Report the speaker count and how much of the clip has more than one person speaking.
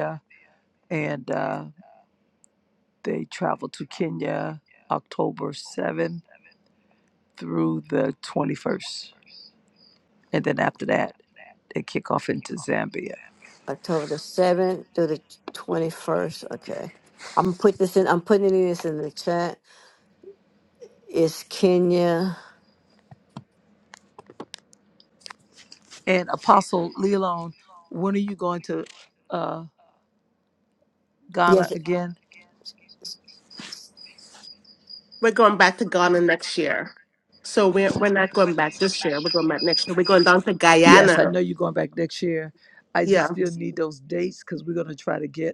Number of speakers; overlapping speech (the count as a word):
three, about 2%